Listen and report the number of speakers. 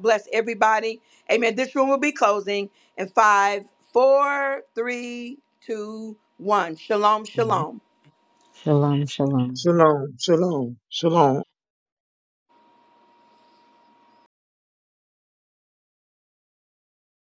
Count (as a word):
three